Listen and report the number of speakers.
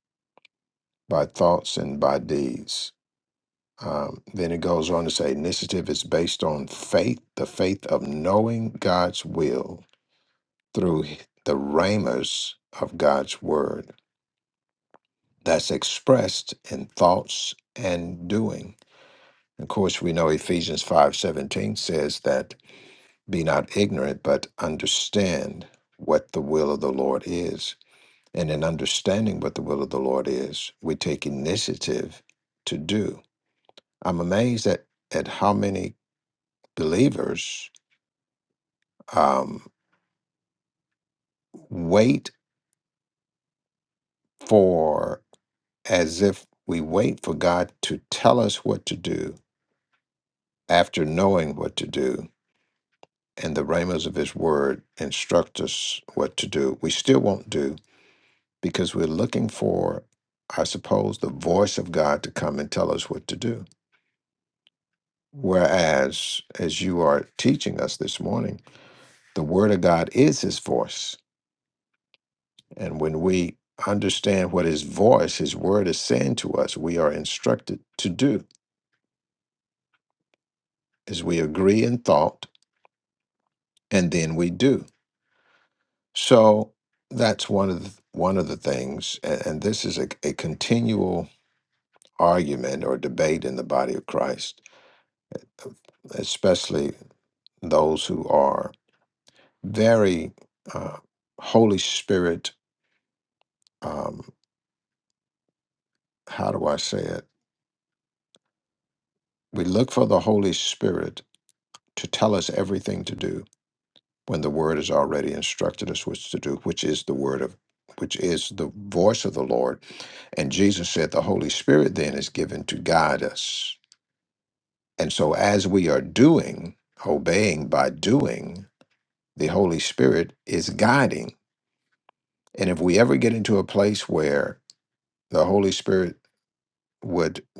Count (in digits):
1